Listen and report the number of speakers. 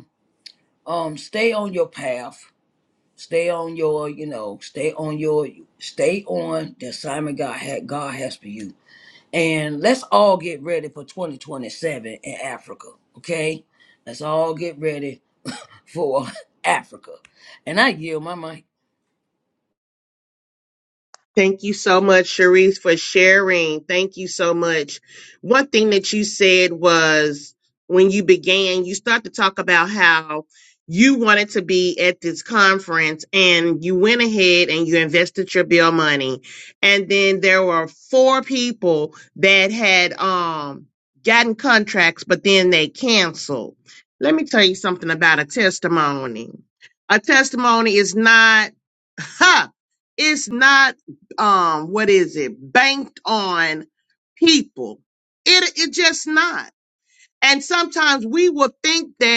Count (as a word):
two